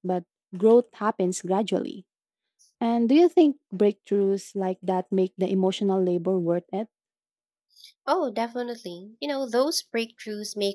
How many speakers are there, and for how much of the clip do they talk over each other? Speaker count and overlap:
2, no overlap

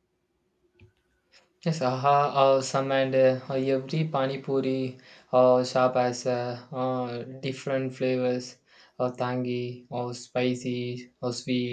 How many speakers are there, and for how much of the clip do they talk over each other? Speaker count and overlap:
1, no overlap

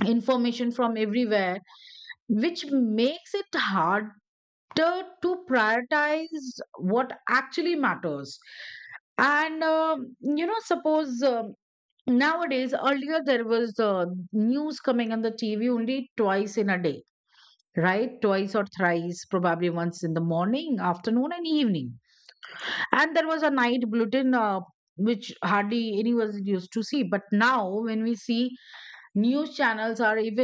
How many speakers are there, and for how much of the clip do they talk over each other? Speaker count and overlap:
1, no overlap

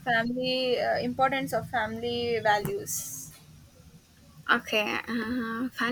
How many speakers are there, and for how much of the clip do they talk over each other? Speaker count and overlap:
2, no overlap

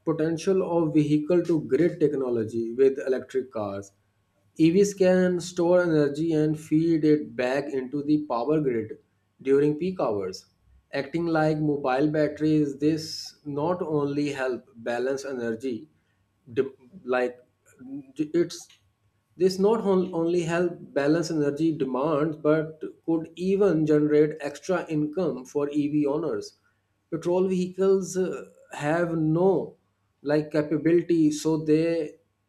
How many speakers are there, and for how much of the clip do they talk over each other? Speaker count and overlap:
1, no overlap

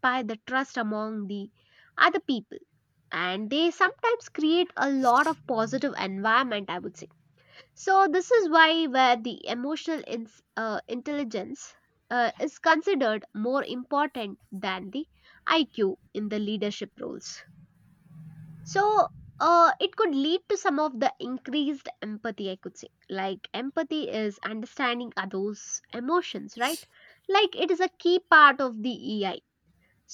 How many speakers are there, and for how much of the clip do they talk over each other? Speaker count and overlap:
1, no overlap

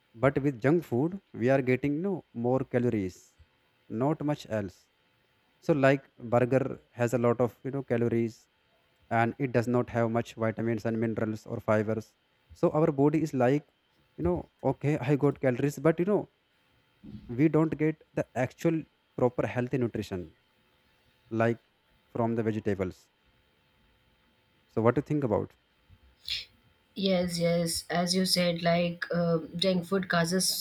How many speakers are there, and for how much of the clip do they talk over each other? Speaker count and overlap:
2, no overlap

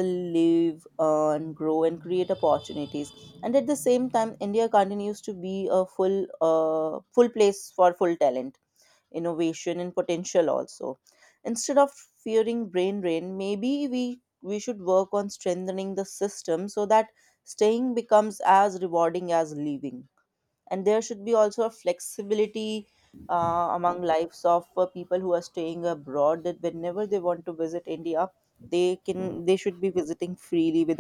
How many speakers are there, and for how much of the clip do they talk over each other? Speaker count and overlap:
1, no overlap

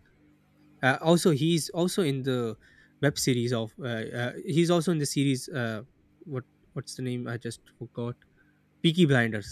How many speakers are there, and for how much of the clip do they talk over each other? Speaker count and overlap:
1, no overlap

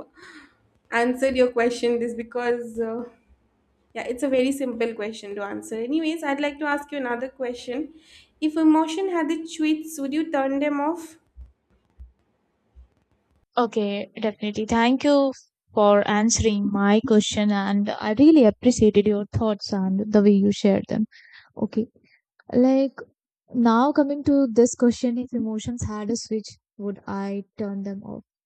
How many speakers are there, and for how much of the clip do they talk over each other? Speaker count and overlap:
2, no overlap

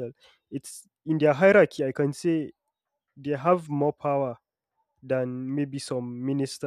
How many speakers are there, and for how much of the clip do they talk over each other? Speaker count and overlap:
1, no overlap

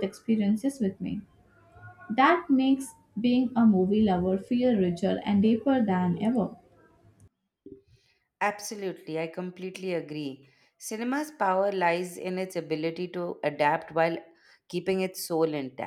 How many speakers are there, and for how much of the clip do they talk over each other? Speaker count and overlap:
2, no overlap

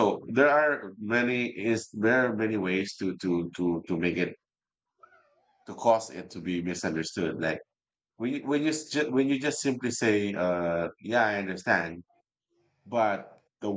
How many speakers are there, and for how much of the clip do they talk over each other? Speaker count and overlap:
1, no overlap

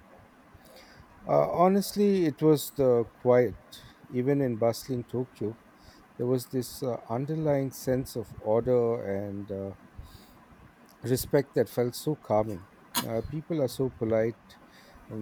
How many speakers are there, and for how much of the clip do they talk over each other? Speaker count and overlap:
1, no overlap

